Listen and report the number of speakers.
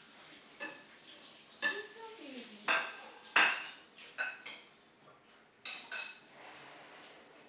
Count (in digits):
1